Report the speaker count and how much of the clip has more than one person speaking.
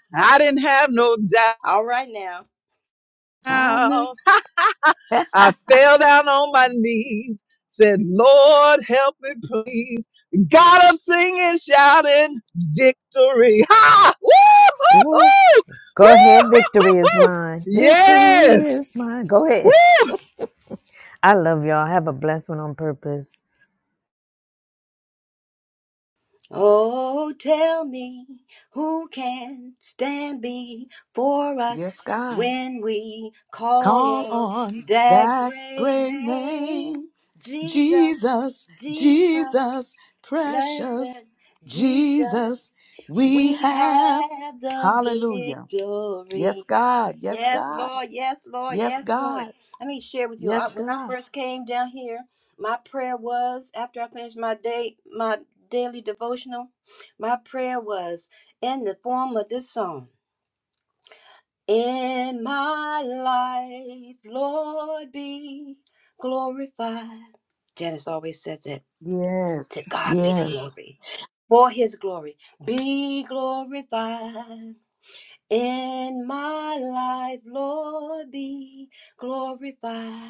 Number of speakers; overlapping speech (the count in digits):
4, about 15%